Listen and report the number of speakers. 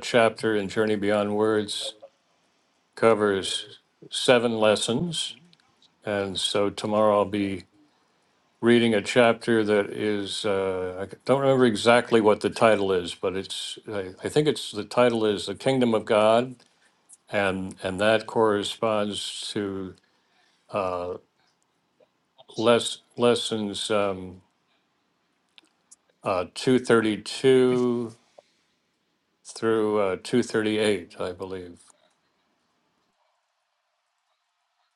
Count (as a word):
one